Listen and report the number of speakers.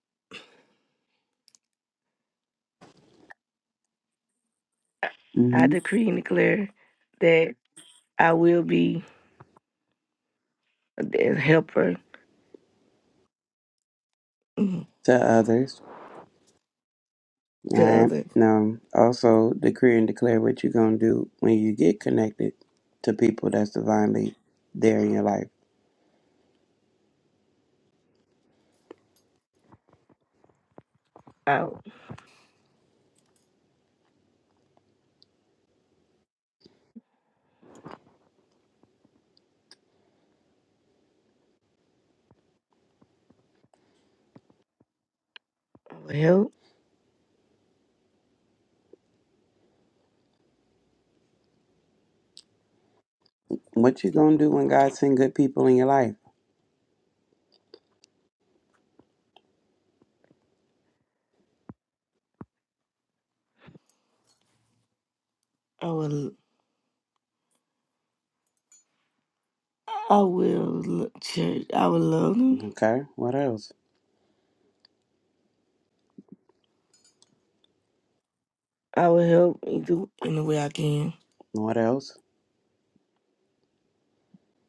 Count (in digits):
2